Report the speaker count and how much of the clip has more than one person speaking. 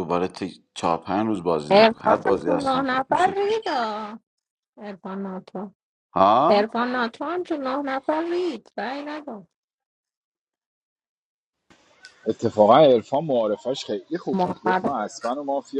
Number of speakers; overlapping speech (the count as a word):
three, about 16%